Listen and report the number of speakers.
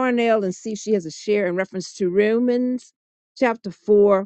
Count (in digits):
1